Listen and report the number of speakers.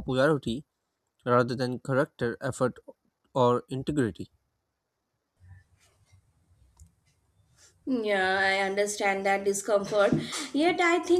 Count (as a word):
two